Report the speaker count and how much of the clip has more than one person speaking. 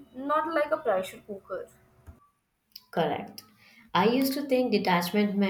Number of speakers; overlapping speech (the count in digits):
2, no overlap